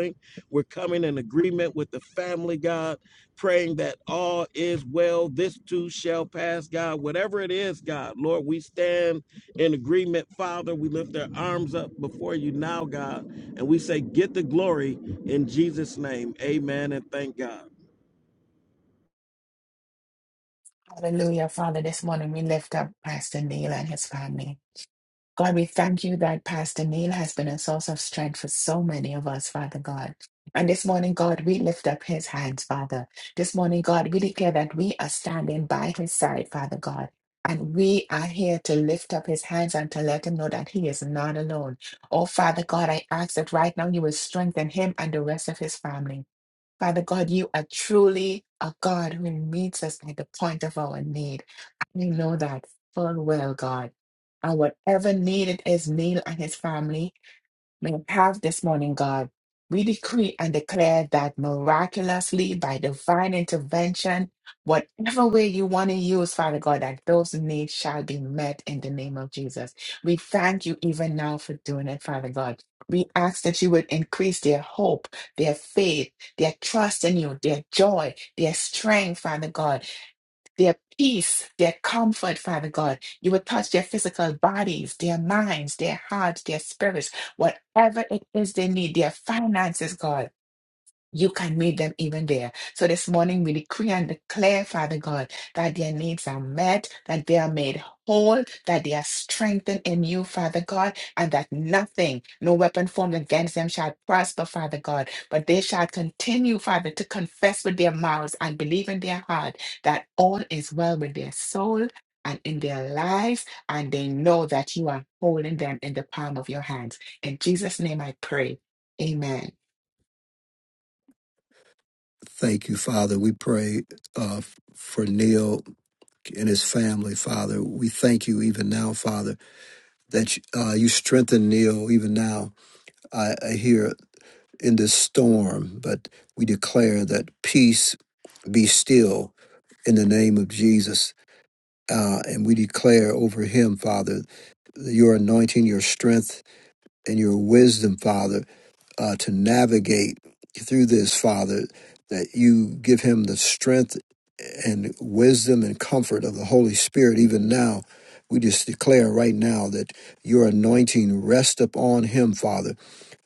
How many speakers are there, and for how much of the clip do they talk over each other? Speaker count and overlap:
three, no overlap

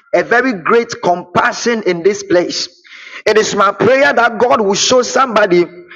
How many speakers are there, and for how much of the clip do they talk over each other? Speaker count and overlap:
one, no overlap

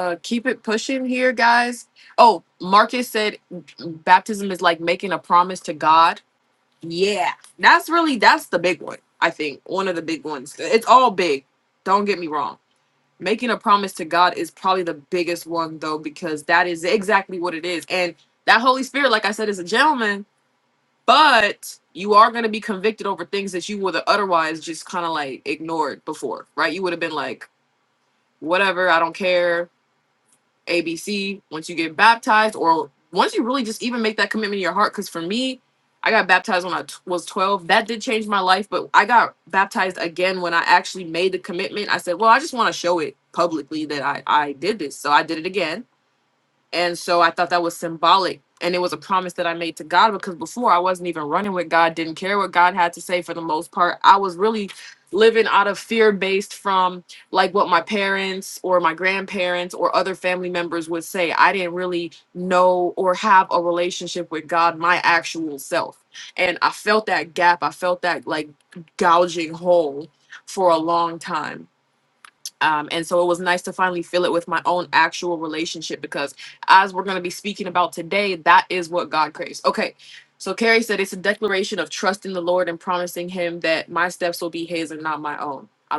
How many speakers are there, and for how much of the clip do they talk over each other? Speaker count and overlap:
one, no overlap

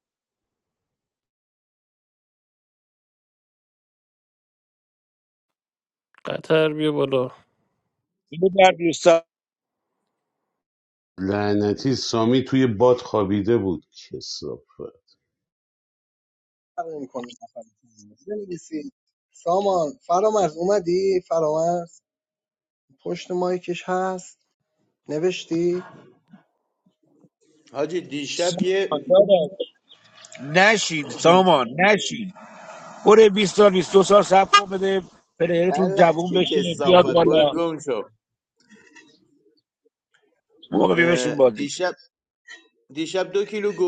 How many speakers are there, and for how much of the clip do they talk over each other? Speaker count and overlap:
five, about 6%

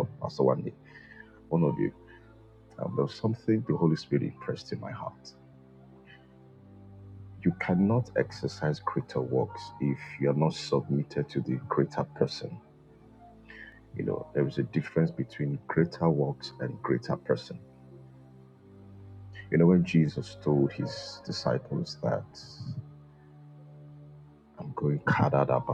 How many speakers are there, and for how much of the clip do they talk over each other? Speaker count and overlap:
one, no overlap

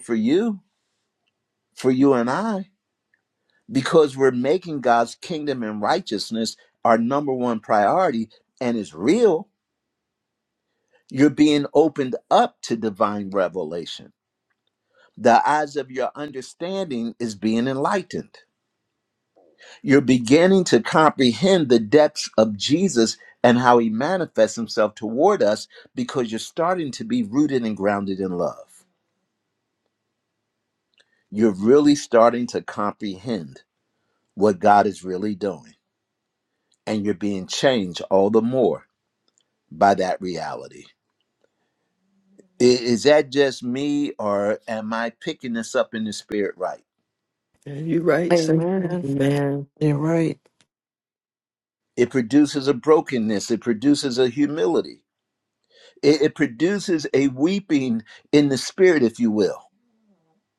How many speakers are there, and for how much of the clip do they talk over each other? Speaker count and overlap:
three, about 1%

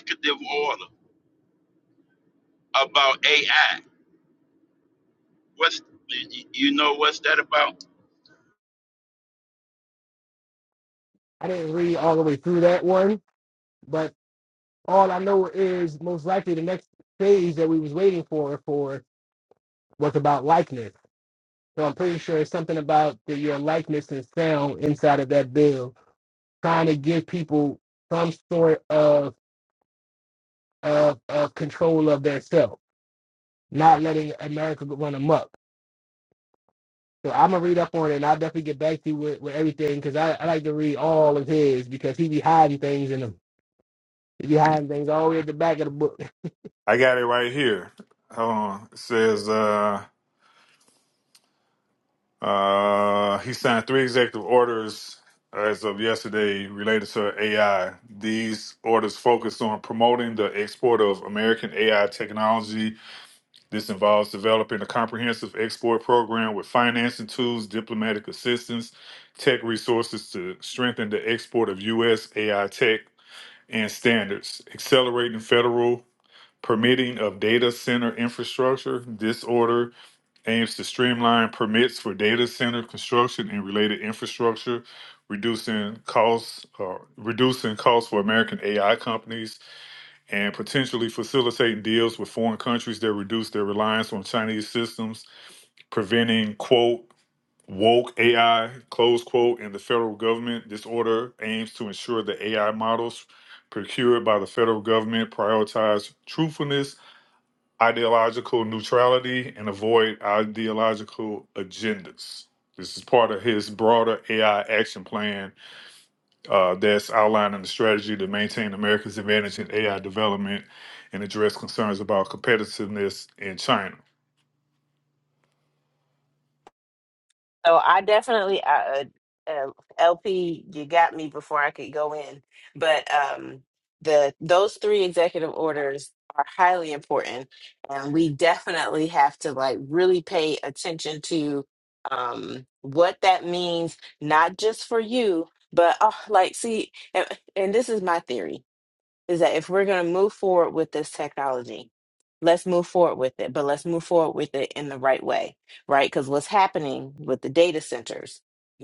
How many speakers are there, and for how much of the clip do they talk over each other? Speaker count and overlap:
four, no overlap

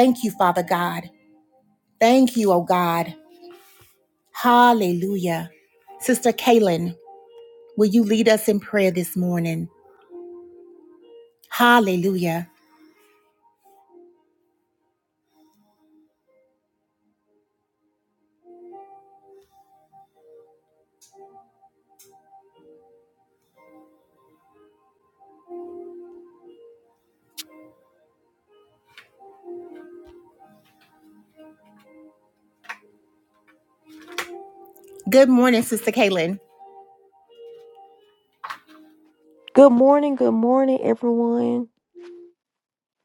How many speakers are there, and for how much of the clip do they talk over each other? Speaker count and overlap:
two, no overlap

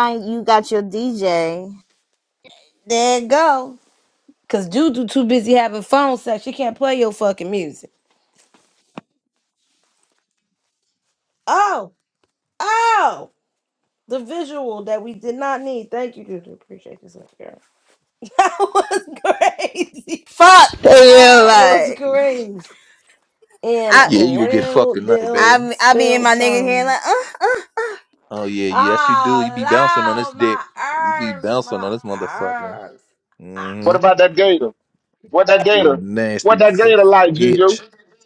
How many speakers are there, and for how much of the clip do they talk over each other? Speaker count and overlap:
four, about 21%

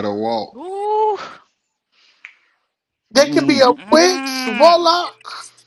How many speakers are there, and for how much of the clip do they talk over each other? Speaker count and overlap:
three, about 29%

